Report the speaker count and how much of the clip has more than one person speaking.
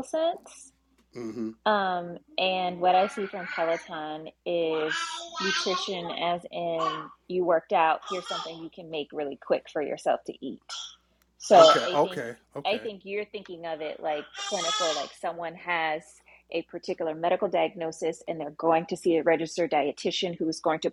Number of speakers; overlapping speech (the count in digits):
2, about 4%